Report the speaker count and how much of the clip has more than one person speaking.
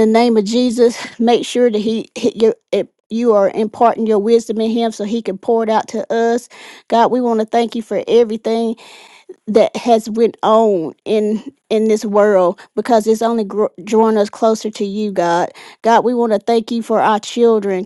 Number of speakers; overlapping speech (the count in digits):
1, no overlap